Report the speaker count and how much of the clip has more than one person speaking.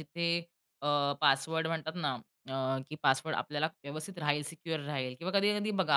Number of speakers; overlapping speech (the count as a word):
one, no overlap